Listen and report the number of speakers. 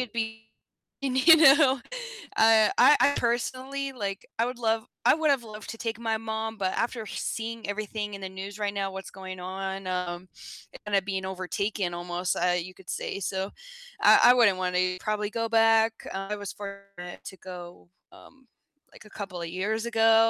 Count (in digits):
1